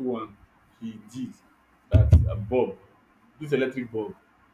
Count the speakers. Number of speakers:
one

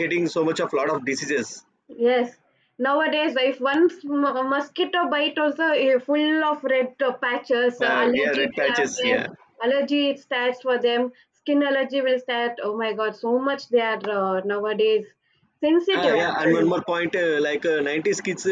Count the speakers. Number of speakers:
two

